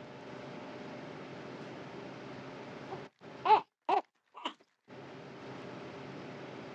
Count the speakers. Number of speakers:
0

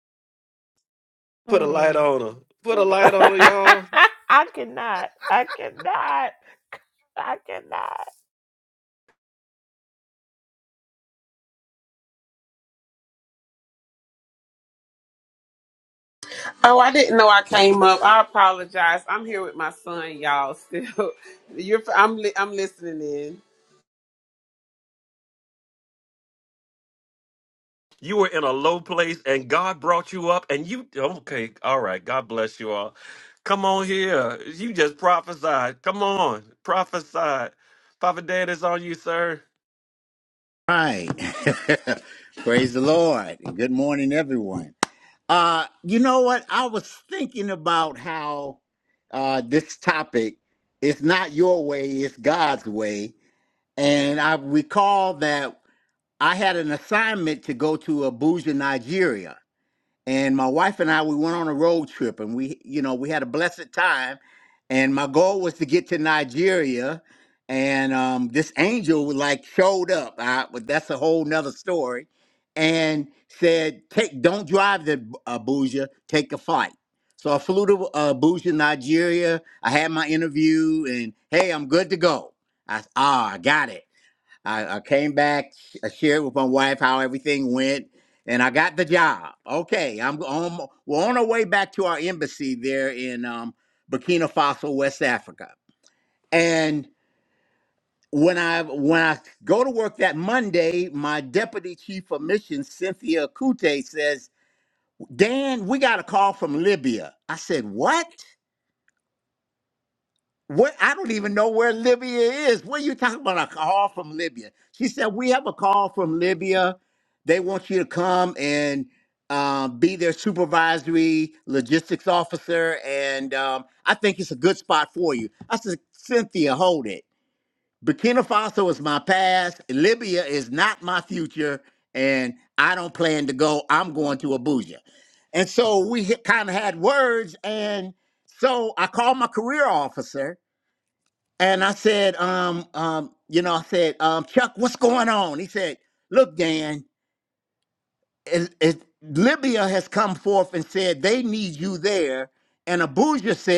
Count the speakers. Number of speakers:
4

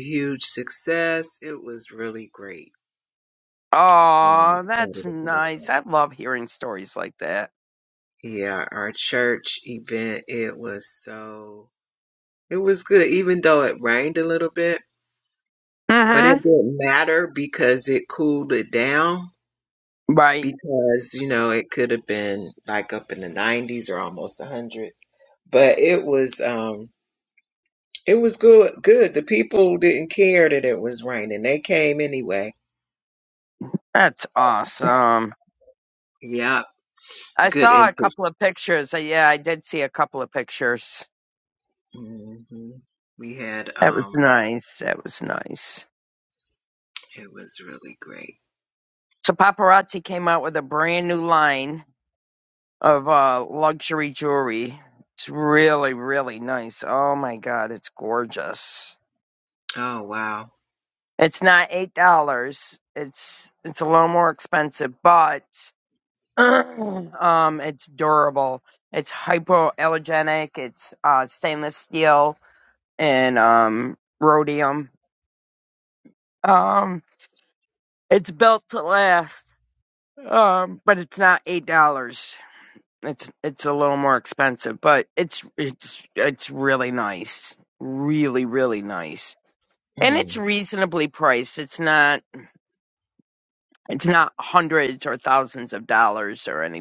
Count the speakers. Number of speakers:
2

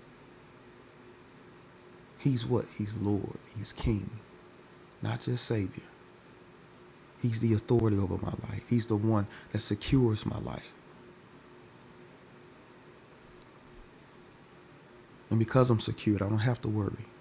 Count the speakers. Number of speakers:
1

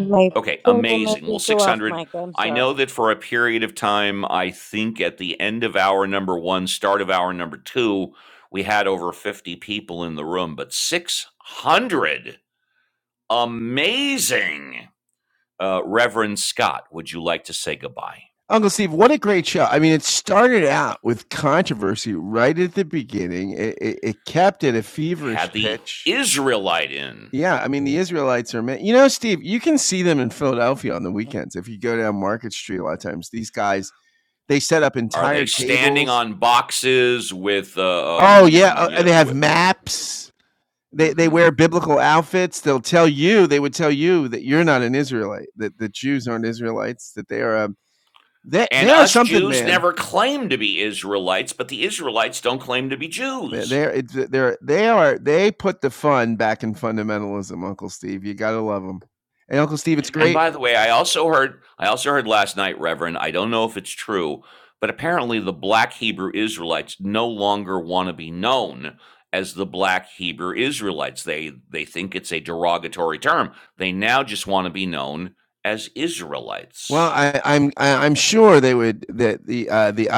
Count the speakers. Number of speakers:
3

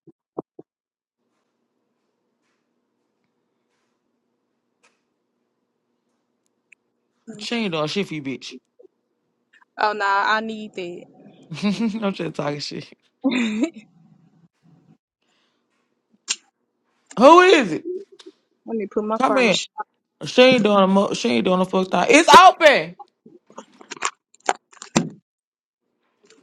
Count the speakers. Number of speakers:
2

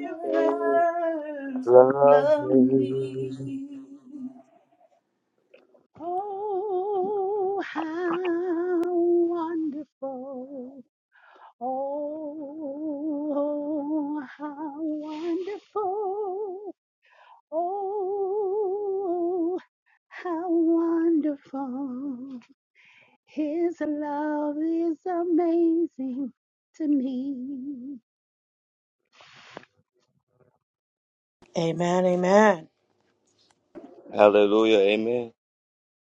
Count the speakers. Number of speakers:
4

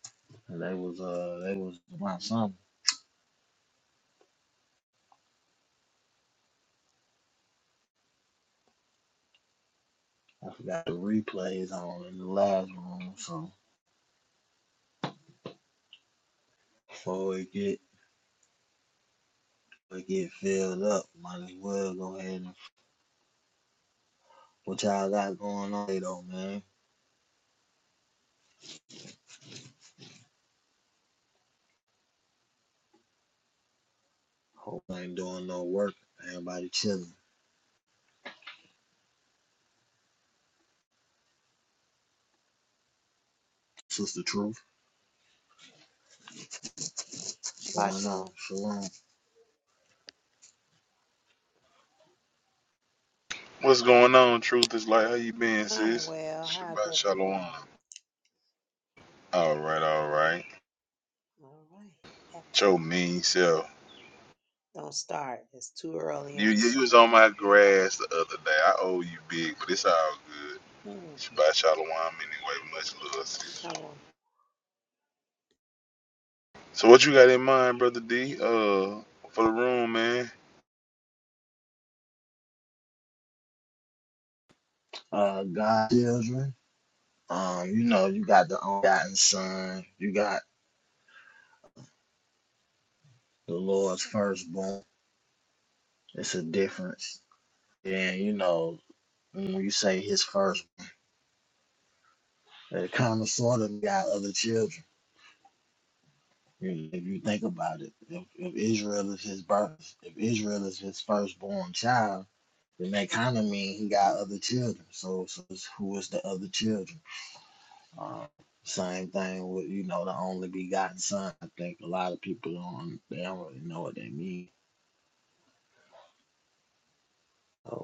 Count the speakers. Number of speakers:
3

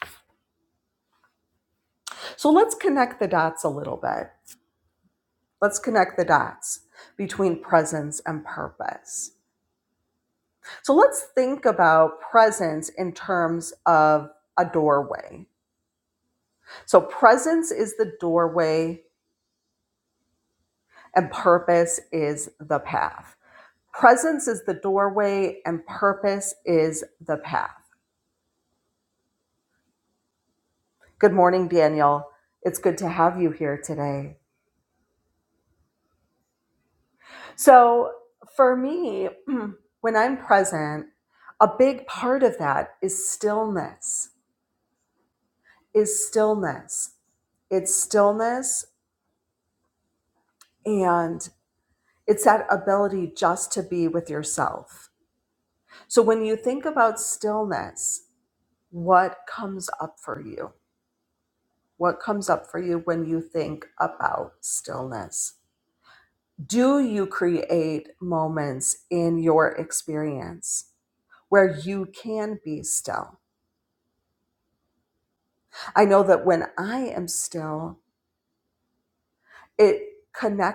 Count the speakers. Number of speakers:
1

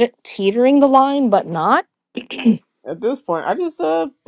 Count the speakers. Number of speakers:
2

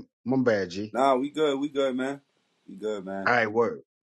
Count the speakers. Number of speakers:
2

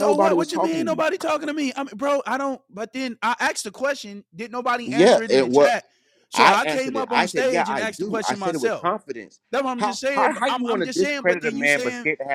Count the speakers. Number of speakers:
2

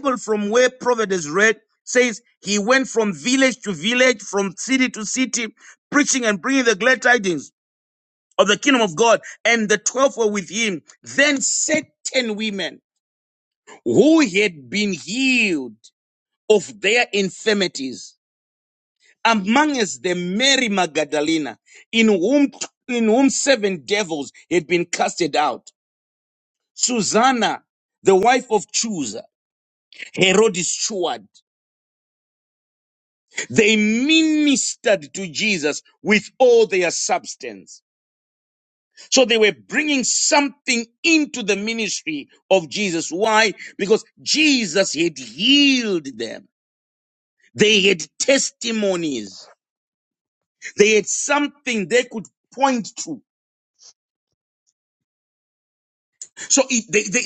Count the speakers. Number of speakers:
1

